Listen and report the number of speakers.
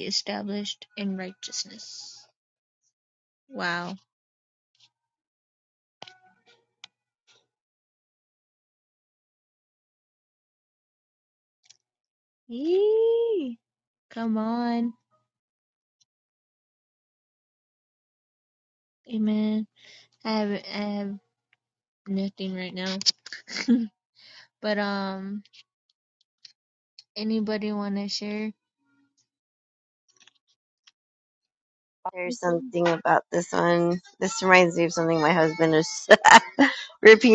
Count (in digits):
2